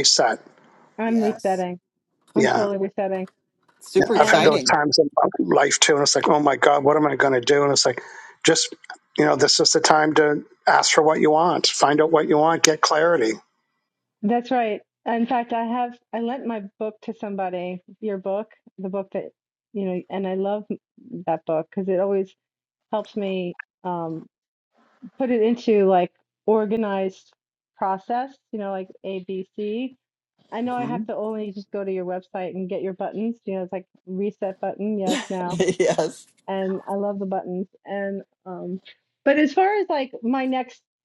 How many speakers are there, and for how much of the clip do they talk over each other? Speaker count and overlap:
three, about 4%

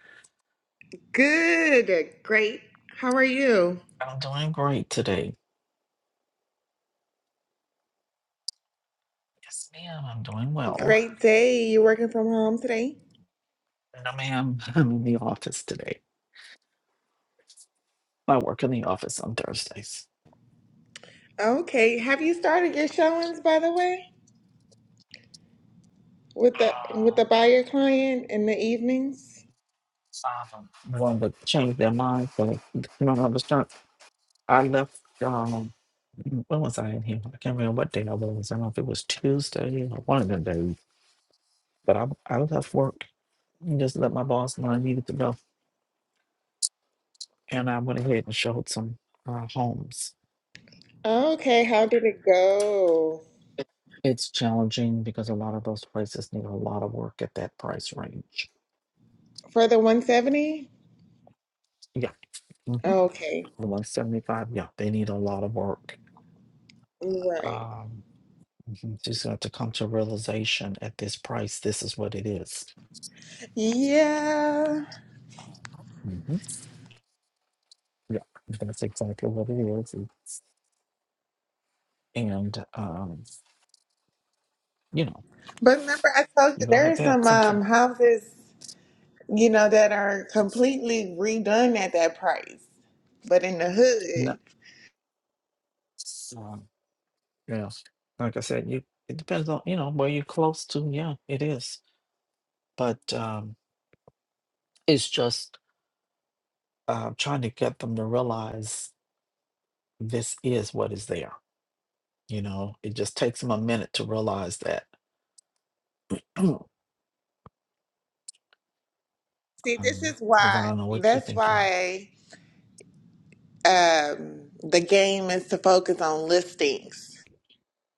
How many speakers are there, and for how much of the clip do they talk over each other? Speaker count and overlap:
two, about 3%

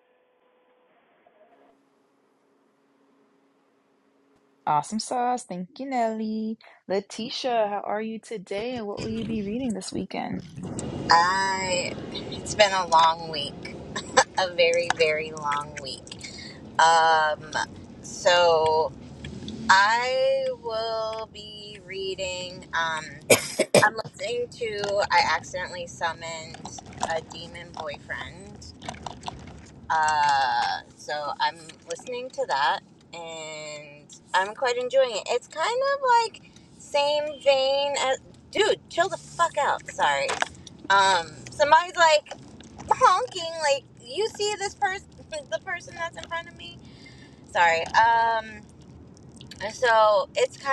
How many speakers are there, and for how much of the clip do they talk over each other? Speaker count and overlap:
two, no overlap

